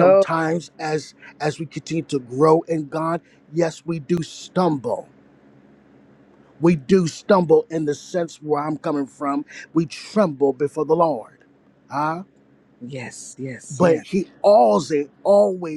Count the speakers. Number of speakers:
two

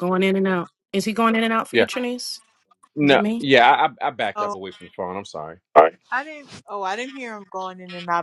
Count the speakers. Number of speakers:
three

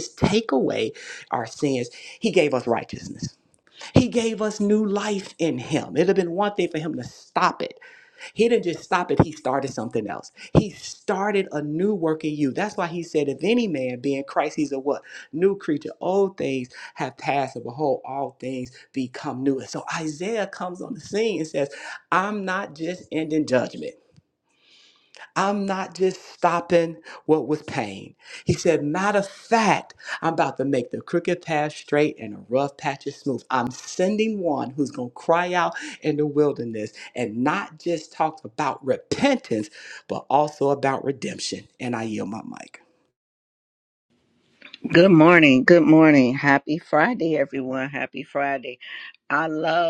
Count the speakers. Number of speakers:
two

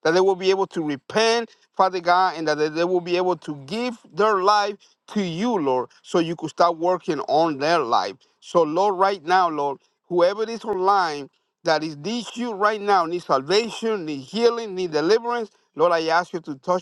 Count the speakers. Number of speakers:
one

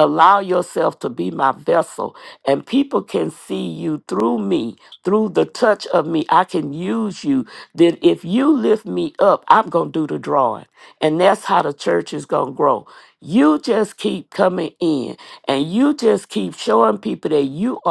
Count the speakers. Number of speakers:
one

